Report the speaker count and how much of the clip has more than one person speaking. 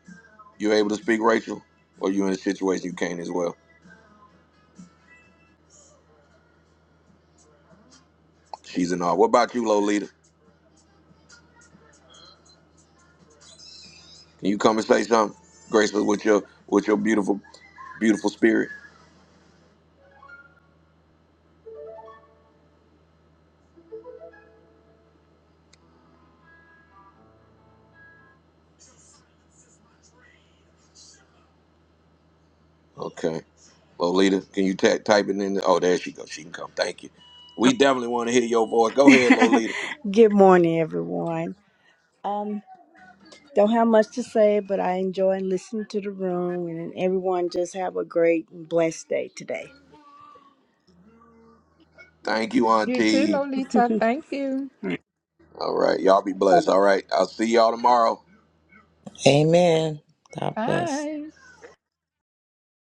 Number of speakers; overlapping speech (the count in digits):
4, about 1%